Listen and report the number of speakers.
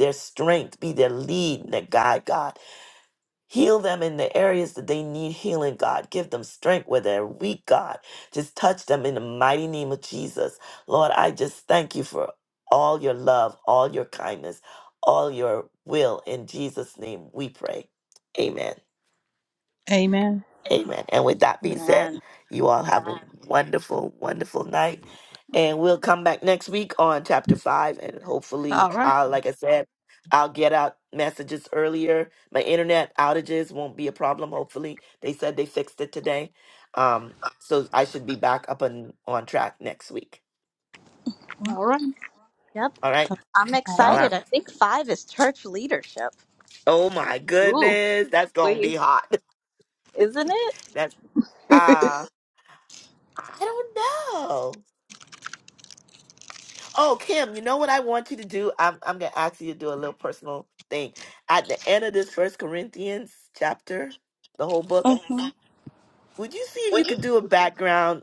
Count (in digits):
3